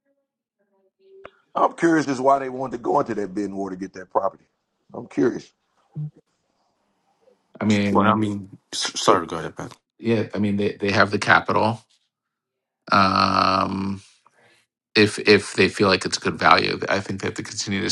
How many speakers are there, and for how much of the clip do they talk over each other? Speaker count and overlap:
3, about 3%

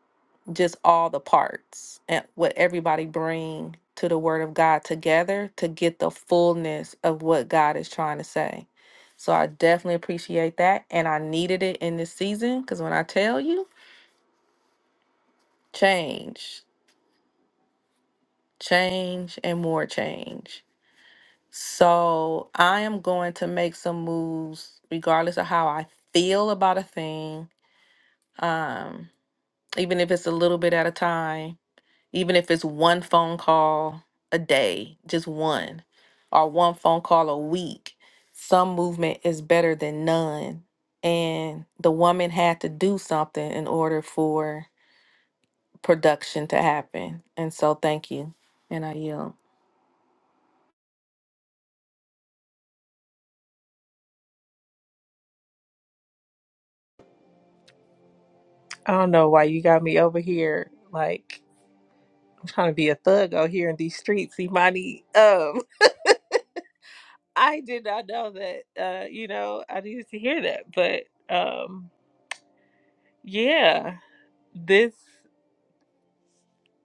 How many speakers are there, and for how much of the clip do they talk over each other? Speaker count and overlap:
2, no overlap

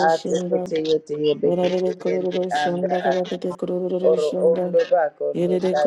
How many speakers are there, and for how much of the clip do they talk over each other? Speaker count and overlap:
2, about 63%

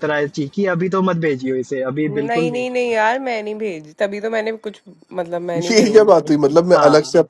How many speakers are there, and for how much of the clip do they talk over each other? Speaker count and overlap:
3, about 19%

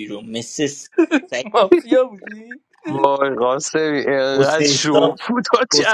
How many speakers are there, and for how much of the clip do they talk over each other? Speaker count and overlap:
3, about 18%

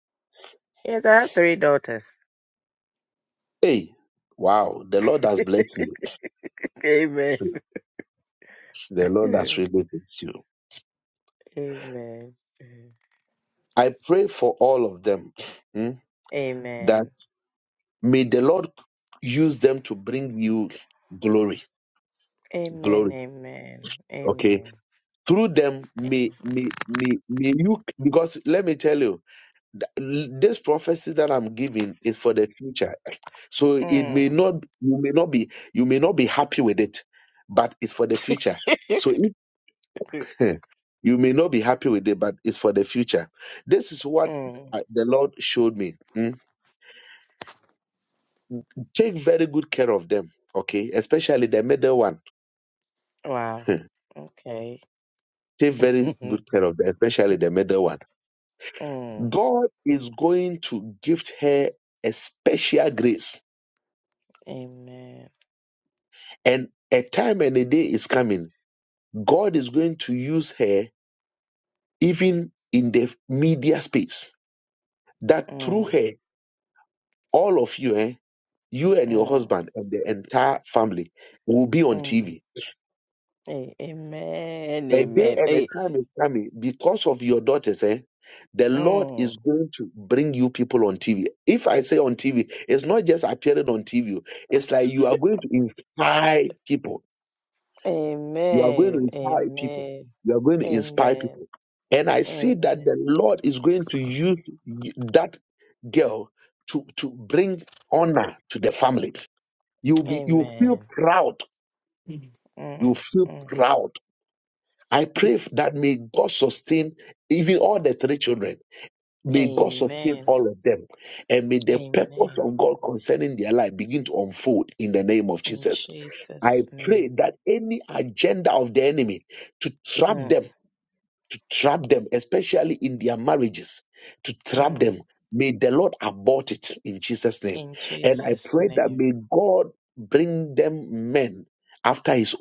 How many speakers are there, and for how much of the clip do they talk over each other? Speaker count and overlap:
2, about 9%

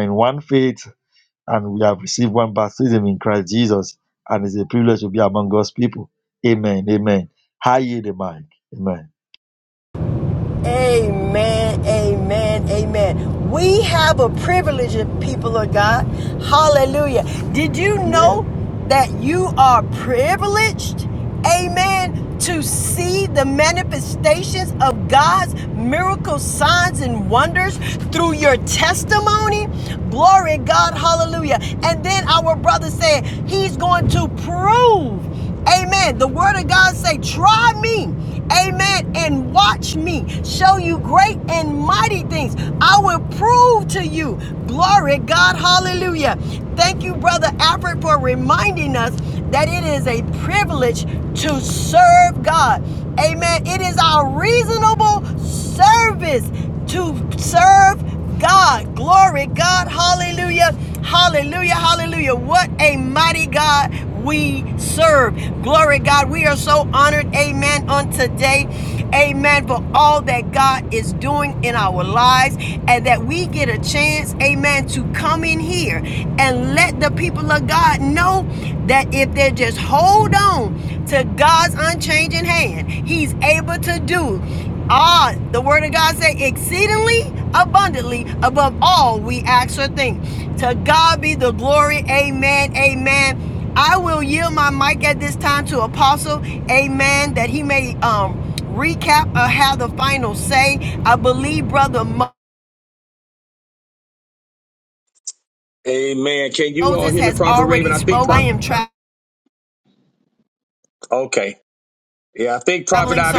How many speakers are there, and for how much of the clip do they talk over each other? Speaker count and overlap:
3, about 2%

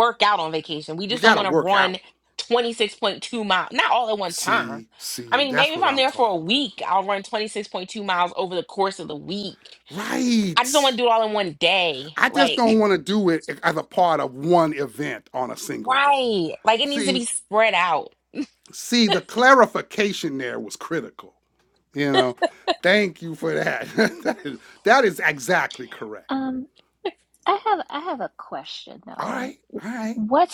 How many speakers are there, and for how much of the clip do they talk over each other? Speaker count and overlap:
3, about 13%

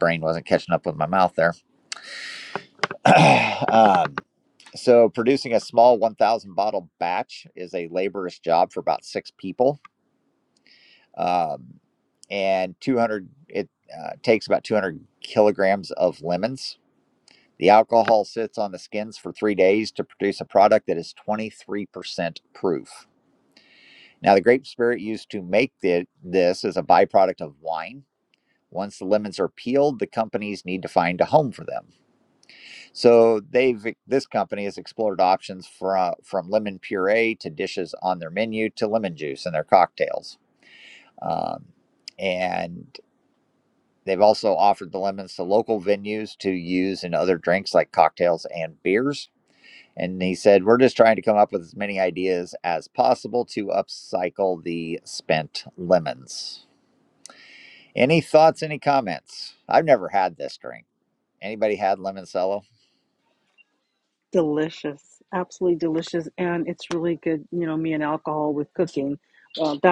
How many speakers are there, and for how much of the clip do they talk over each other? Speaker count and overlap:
2, no overlap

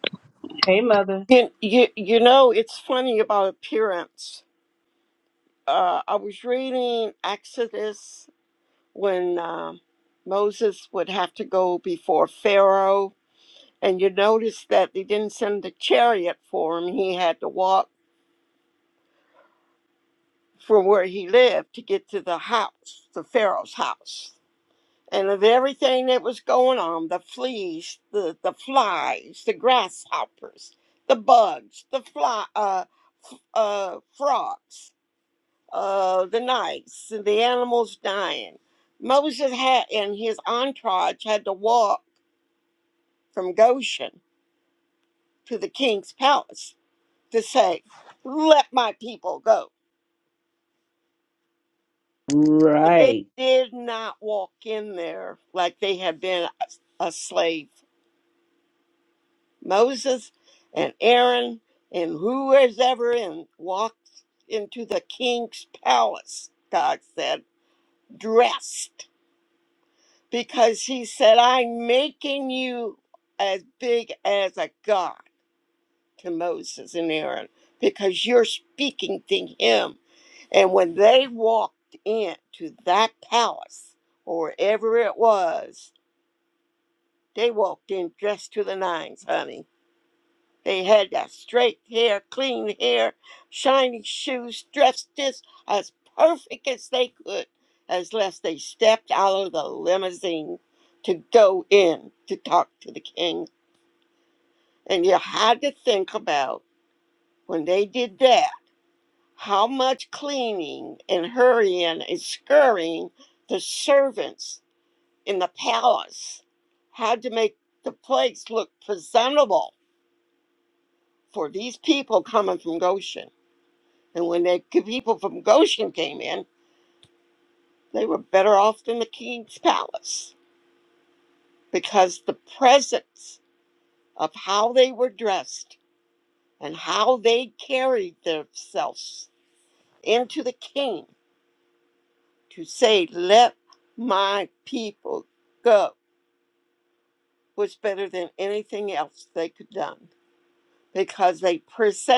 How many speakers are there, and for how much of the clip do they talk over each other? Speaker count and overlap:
2, under 1%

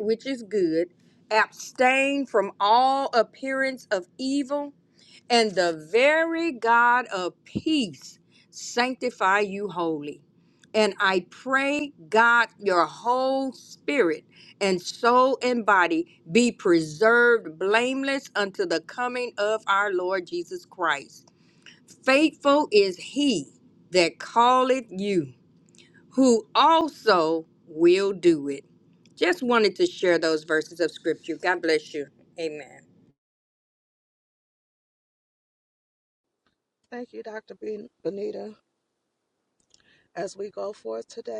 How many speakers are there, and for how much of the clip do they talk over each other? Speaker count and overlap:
2, no overlap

